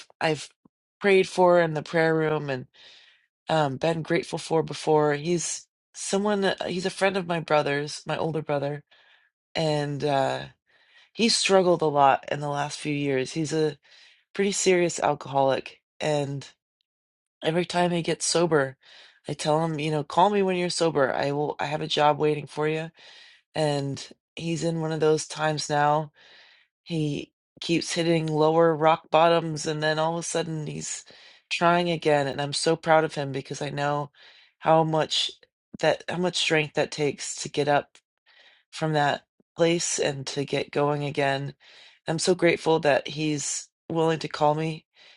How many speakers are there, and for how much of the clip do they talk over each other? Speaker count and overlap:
1, no overlap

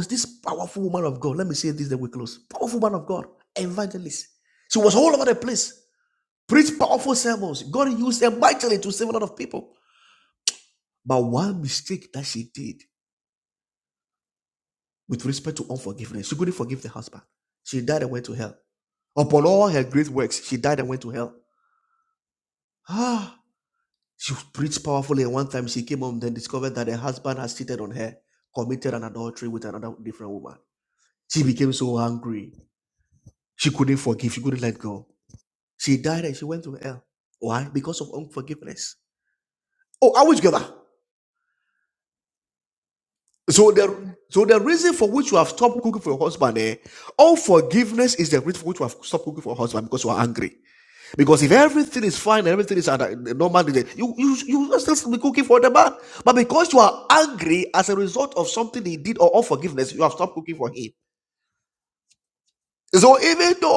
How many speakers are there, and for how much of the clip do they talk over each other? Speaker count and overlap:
1, no overlap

